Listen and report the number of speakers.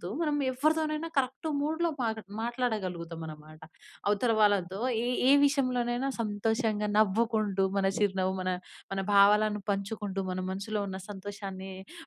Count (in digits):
1